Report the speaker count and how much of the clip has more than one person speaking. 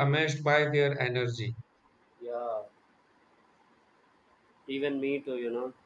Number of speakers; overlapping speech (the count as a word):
two, no overlap